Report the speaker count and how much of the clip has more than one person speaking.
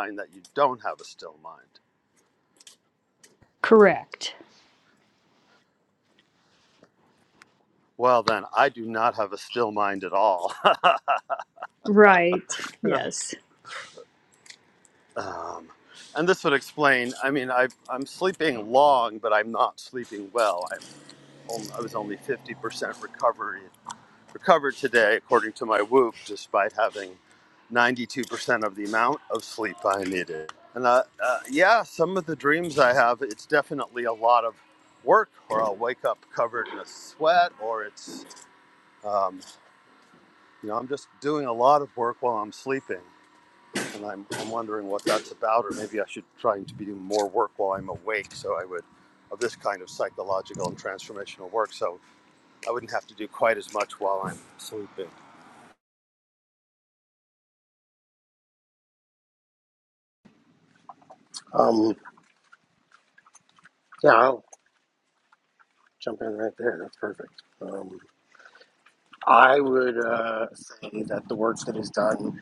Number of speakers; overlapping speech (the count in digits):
3, no overlap